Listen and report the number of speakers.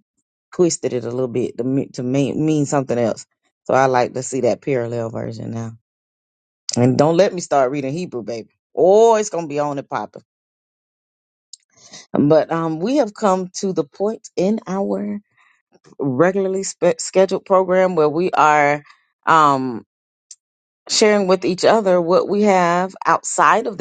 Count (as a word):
one